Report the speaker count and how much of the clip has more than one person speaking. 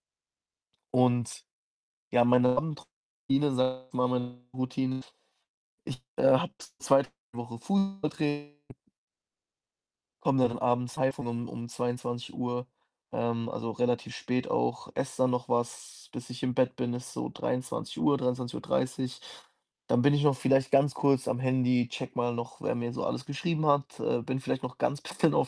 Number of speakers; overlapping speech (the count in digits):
1, no overlap